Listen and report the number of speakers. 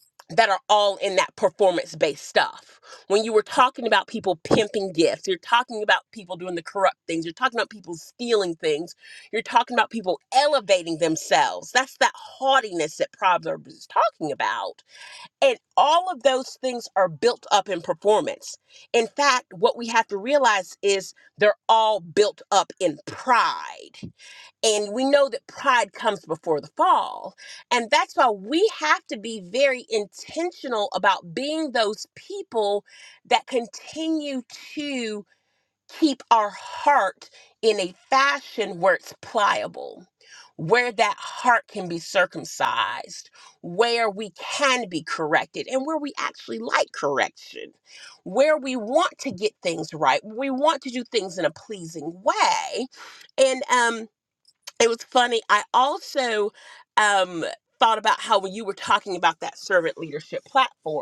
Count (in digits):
1